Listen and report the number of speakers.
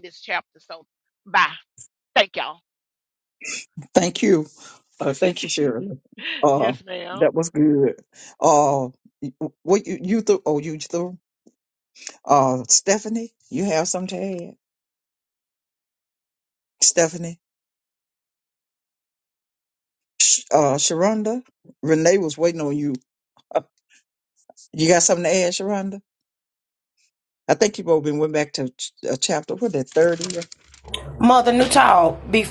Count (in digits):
3